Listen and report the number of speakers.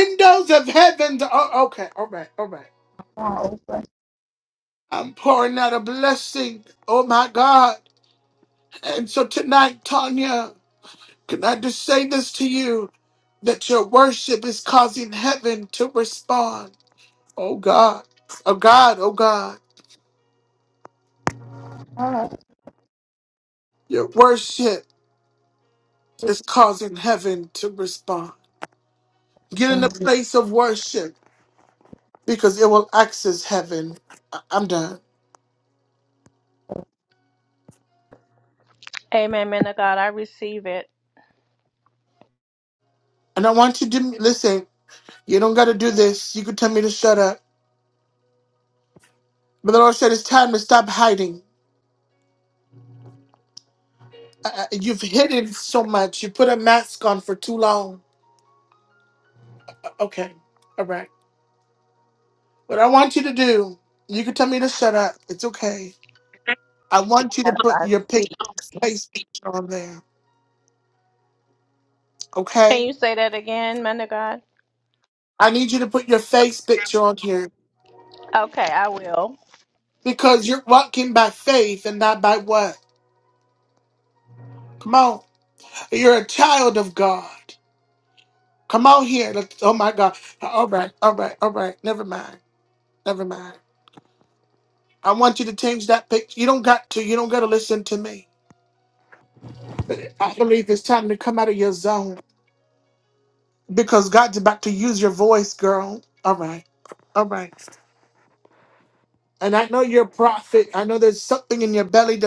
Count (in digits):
3